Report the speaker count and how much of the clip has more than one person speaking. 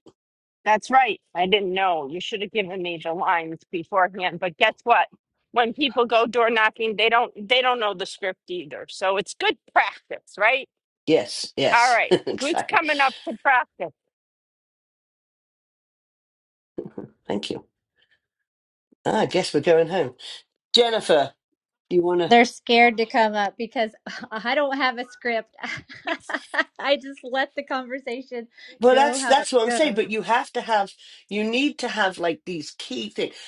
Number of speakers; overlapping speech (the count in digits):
3, about 6%